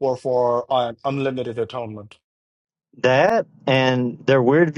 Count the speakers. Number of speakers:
two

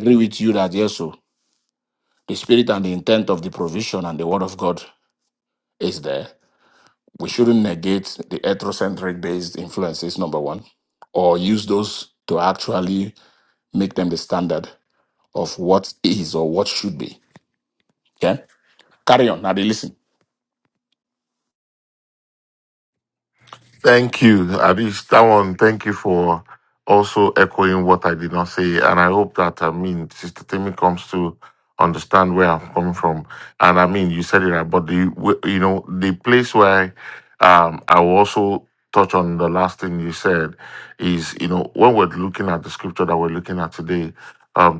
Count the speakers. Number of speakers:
two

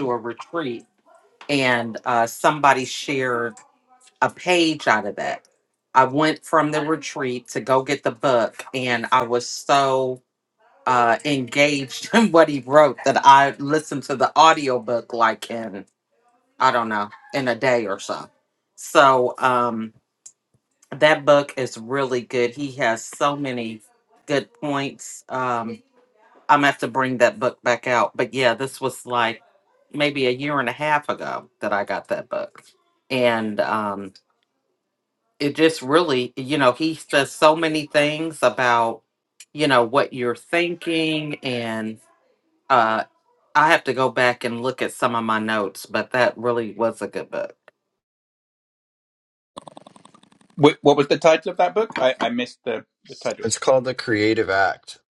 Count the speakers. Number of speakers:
three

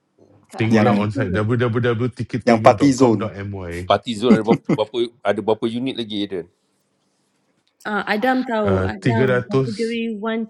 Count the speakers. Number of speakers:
four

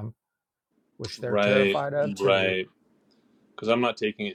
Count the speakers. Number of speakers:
two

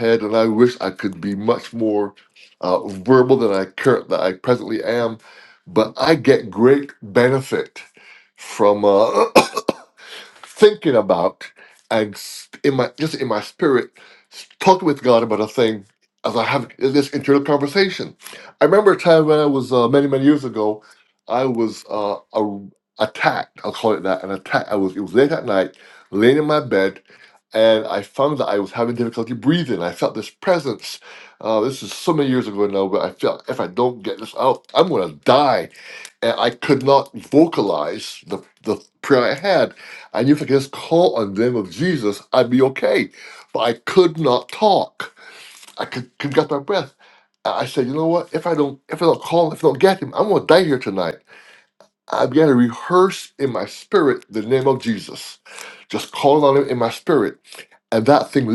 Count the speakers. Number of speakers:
one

